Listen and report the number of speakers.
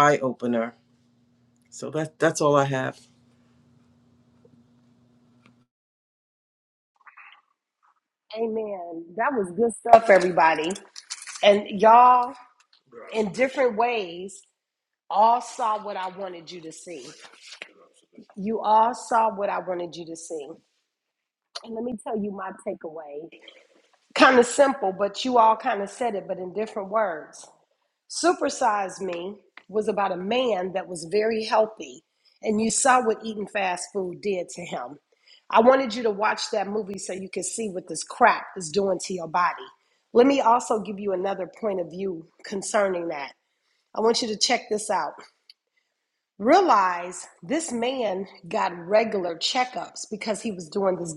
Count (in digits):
2